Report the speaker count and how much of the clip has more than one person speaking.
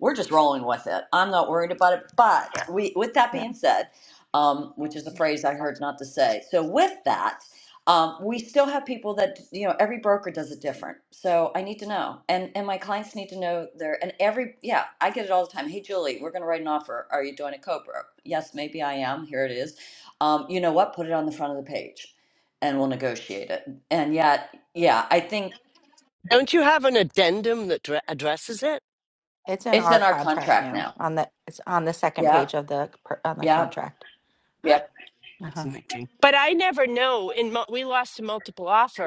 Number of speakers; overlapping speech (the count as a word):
four, about 6%